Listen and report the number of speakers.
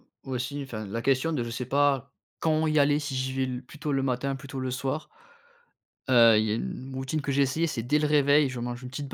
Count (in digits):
1